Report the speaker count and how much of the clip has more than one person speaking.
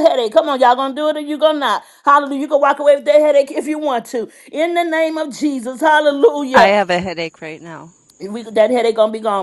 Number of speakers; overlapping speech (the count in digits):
2, about 2%